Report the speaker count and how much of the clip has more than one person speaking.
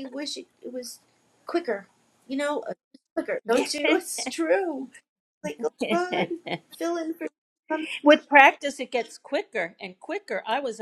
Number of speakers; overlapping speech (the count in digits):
2, about 2%